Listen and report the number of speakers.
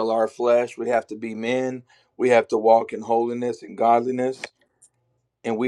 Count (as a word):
one